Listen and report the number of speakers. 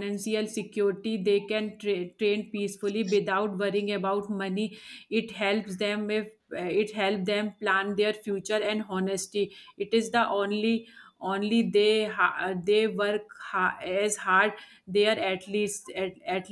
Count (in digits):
1